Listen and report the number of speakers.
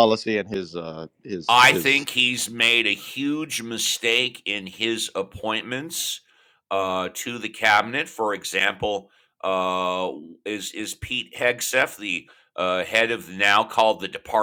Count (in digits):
2